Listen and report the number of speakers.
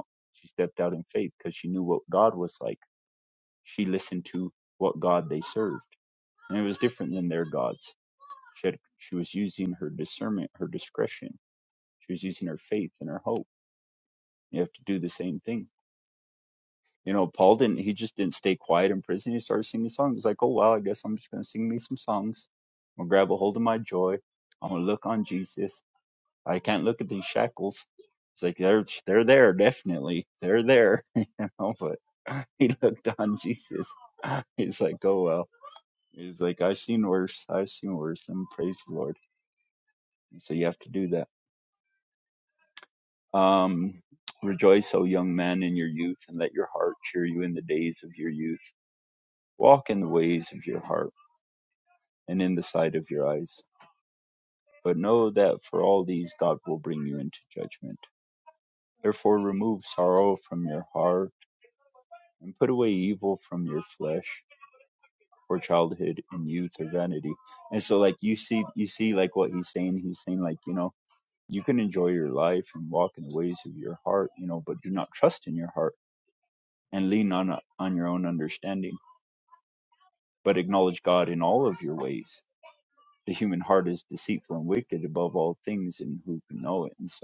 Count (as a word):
one